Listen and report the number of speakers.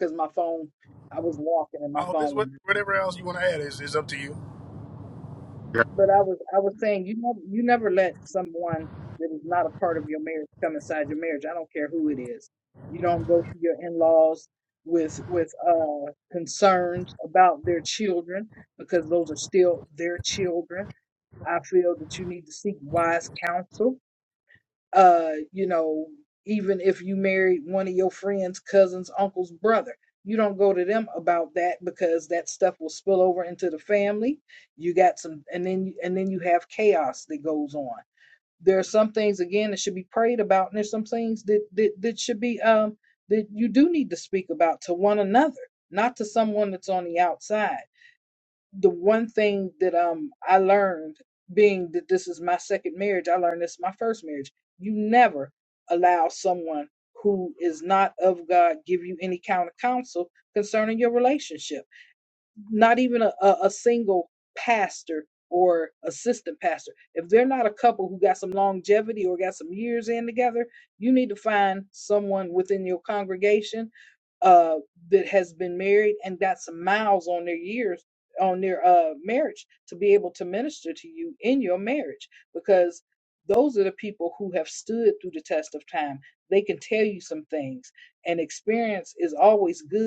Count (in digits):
2